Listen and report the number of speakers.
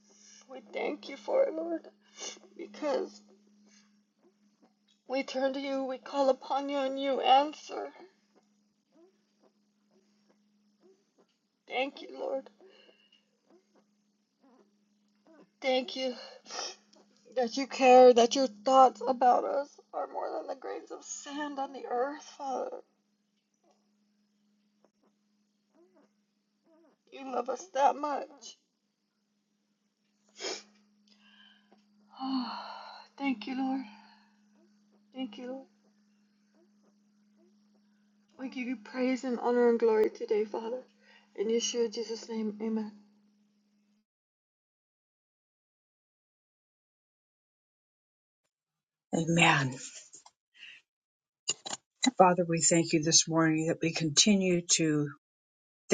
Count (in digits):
2